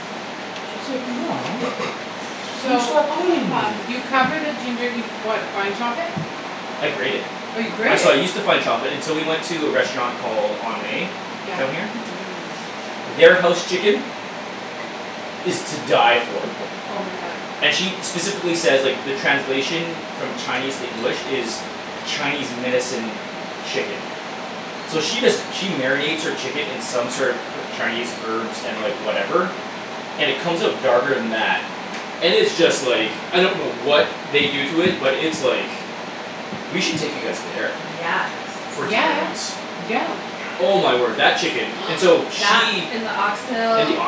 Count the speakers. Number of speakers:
3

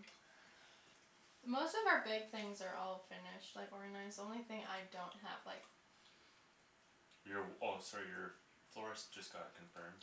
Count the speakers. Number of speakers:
2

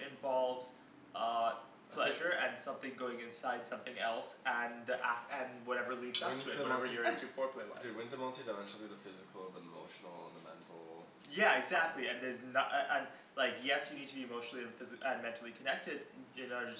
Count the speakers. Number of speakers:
2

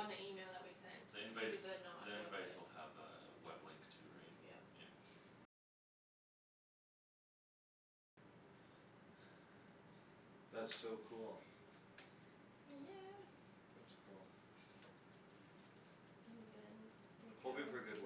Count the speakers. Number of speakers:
3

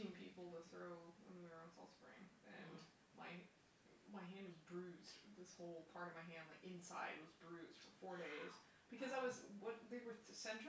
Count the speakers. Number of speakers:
1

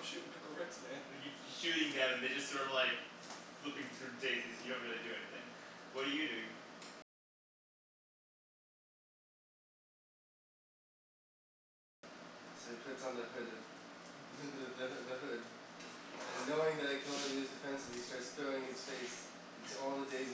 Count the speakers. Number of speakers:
3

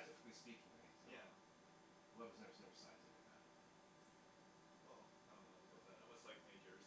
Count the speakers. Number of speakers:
2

